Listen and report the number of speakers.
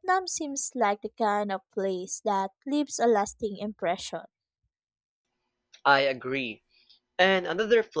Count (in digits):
2